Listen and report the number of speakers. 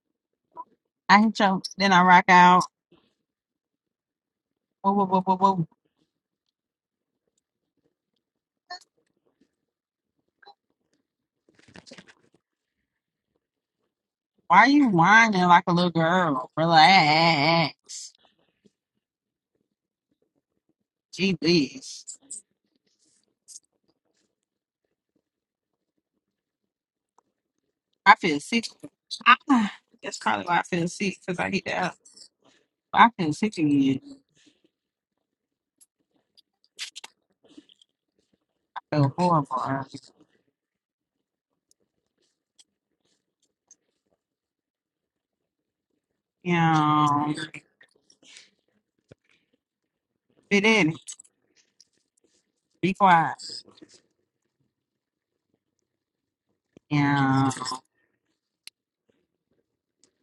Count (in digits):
1